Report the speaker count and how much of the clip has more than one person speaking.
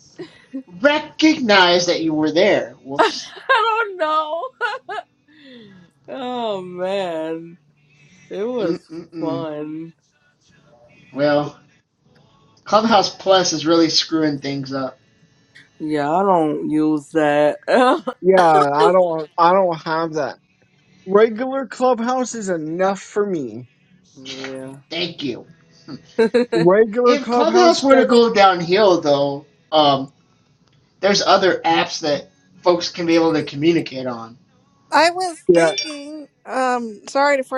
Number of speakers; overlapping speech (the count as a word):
four, about 5%